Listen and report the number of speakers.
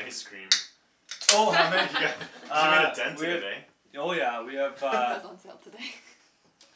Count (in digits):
3